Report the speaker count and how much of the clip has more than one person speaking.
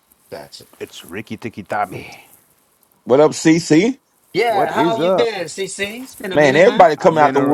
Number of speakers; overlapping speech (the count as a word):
three, about 25%